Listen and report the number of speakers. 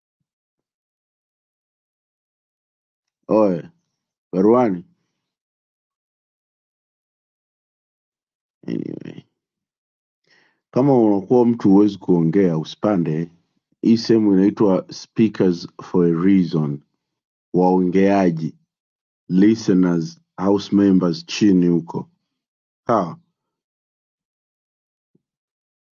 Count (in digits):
1